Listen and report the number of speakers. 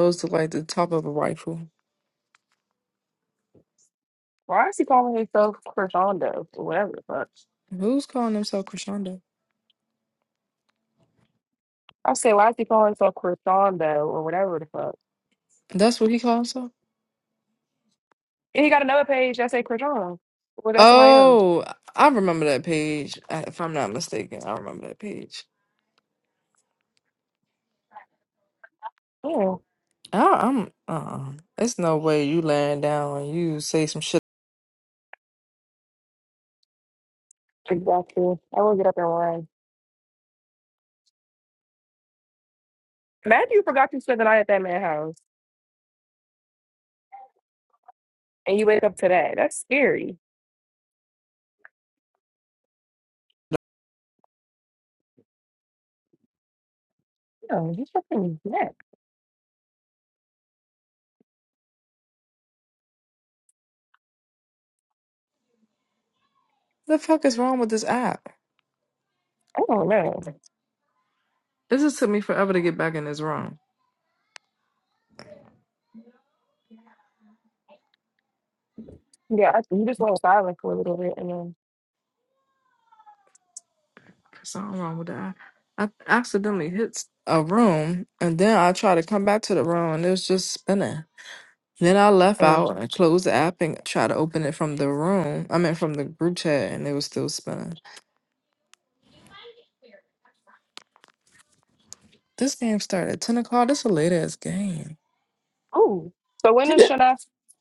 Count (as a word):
two